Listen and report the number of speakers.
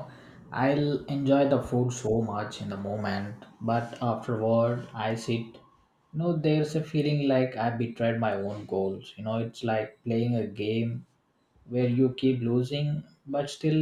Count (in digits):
1